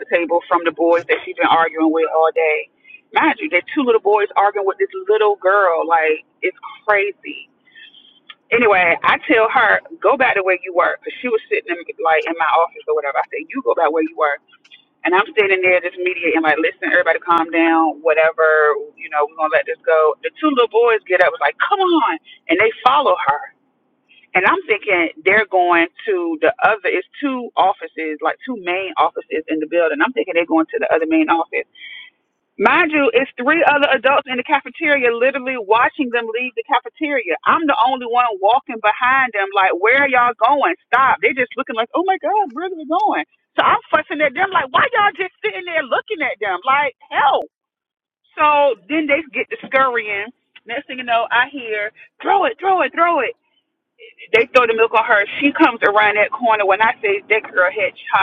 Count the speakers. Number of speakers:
one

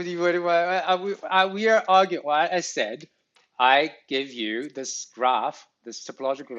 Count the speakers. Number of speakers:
one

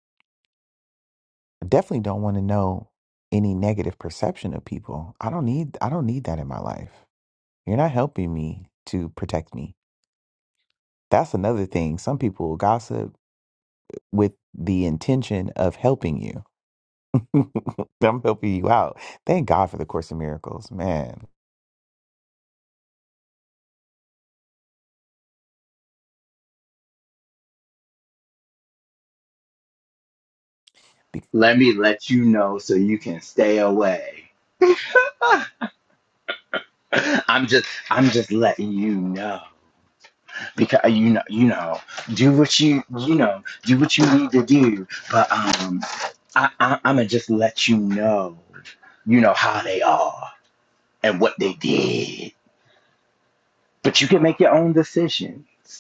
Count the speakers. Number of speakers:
two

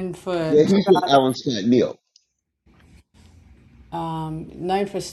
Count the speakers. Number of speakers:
two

